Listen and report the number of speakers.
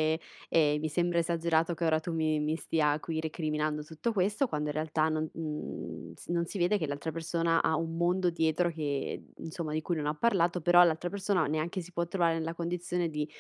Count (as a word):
one